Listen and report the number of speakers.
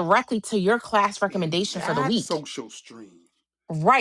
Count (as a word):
two